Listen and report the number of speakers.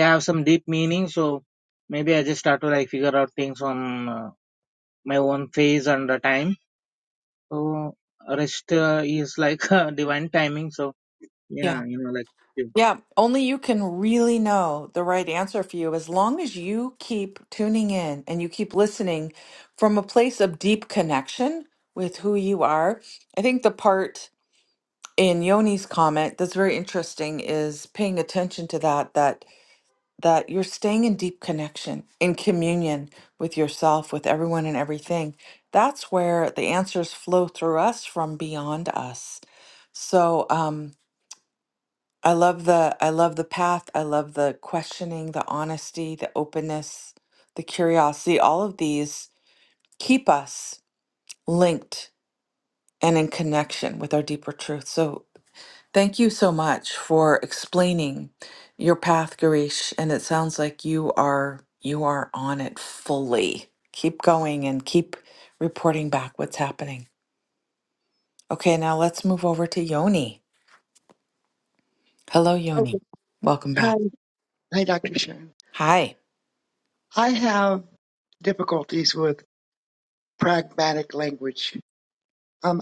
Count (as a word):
three